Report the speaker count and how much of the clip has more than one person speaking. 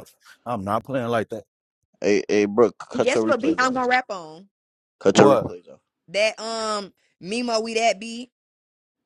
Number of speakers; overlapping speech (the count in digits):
3, about 12%